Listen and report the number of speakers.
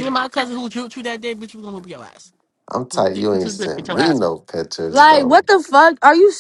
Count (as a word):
three